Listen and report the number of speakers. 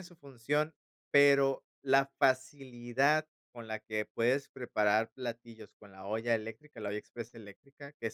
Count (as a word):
one